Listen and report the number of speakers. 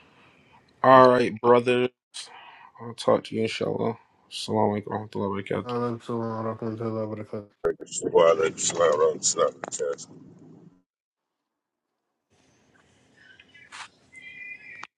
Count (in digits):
3